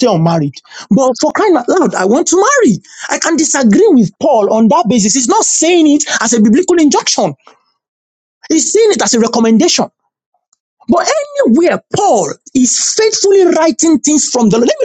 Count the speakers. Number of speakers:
1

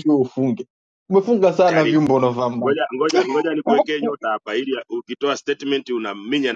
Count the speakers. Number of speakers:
2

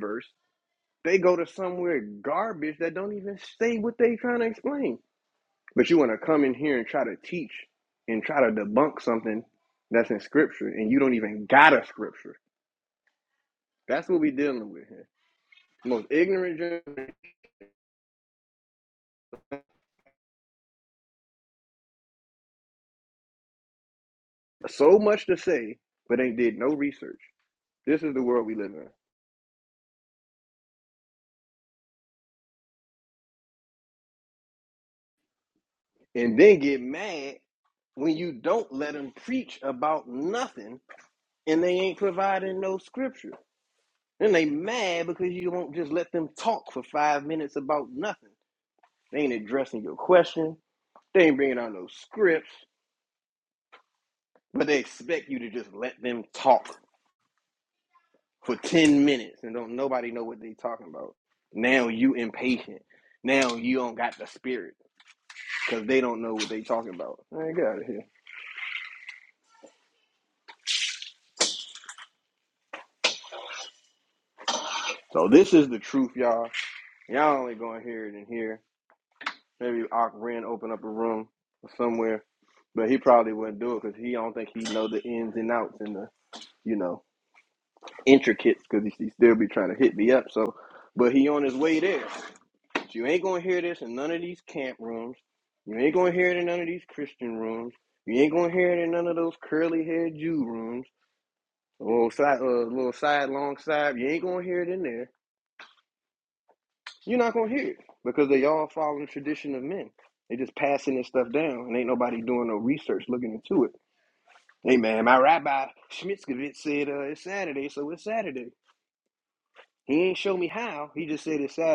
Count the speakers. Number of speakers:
1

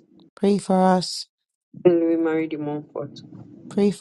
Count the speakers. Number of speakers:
2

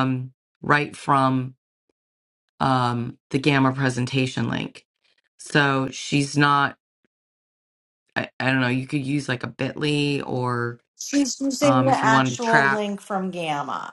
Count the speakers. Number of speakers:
2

